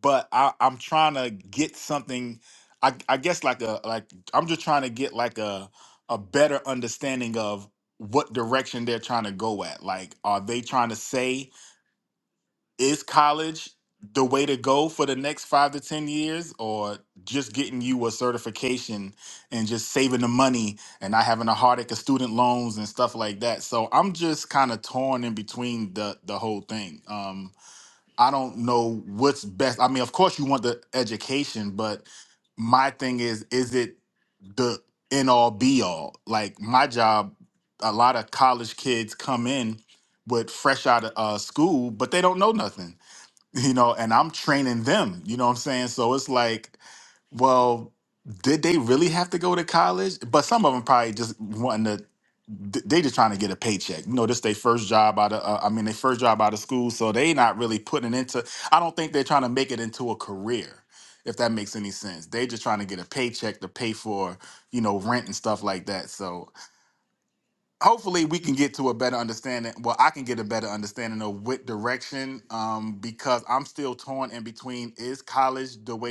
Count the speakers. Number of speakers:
1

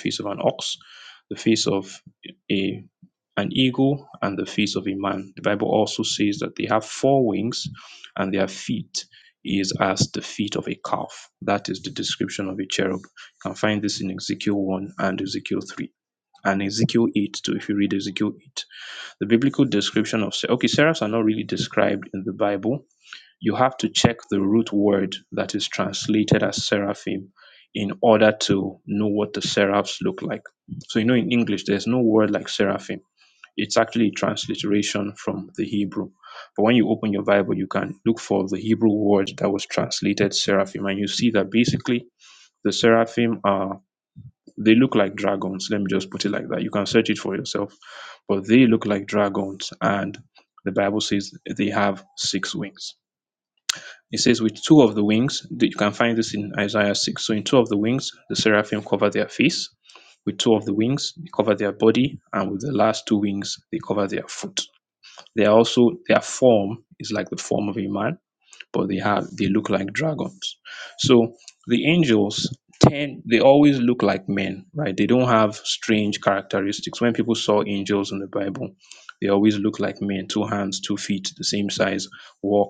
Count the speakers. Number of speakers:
1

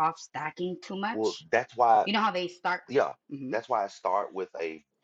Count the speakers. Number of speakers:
2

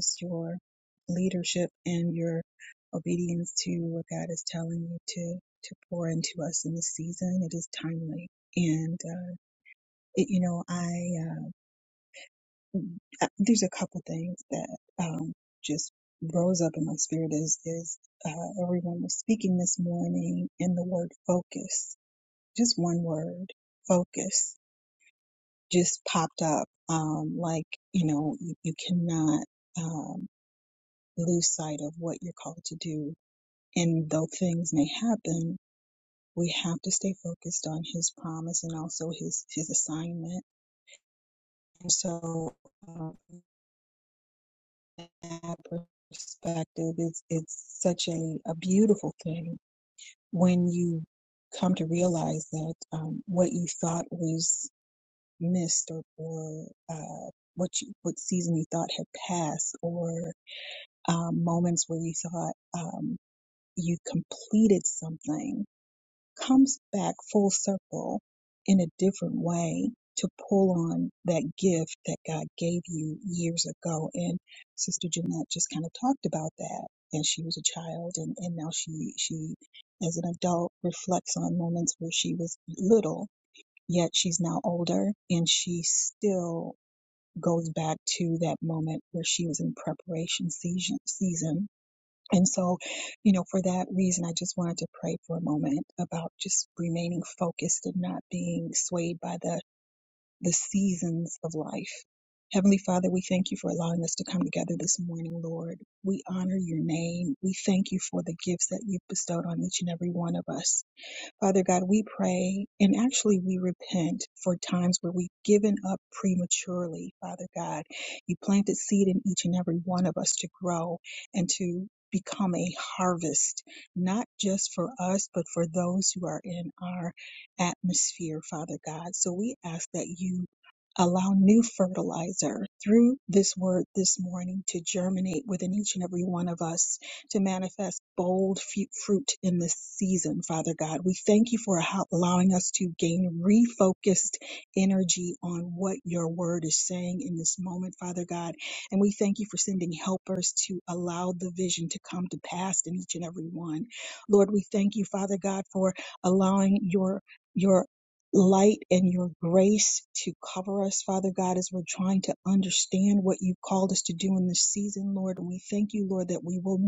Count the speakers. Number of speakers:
1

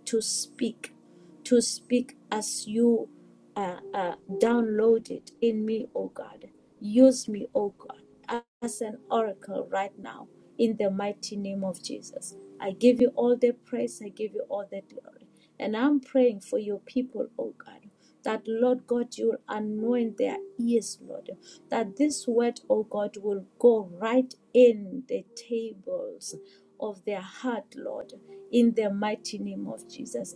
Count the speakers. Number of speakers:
1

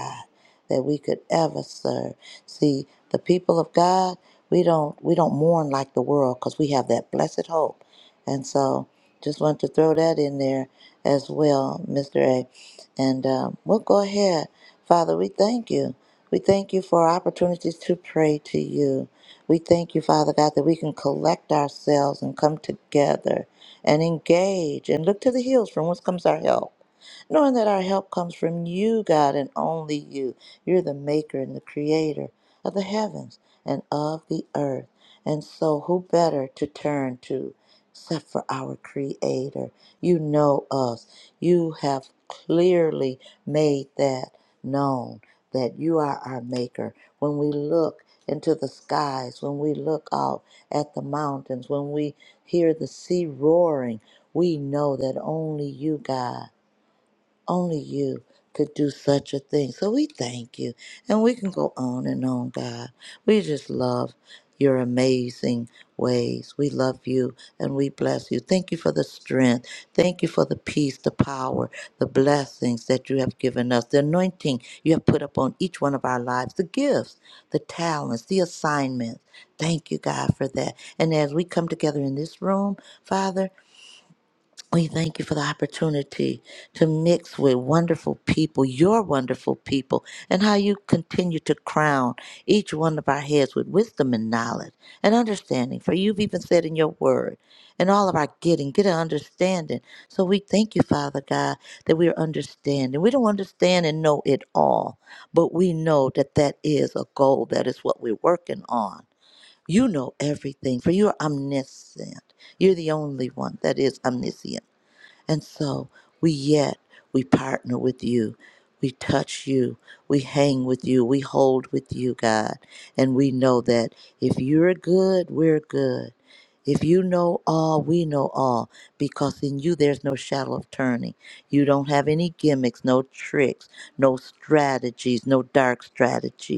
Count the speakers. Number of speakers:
1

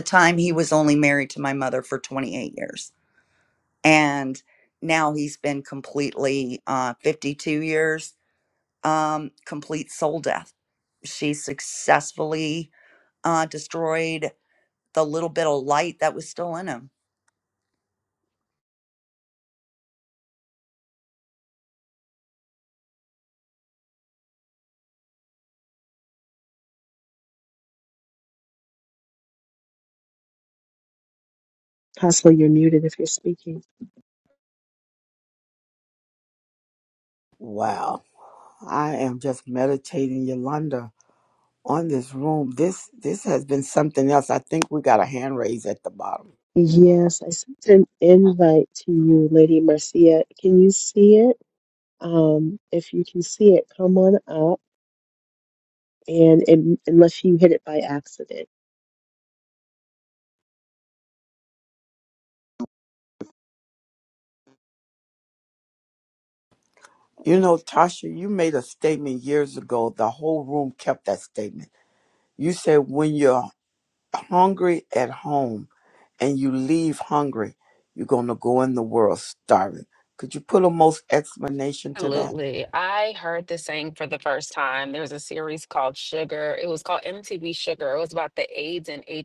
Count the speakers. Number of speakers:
4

